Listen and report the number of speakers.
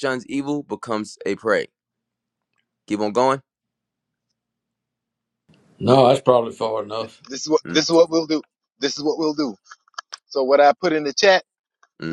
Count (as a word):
three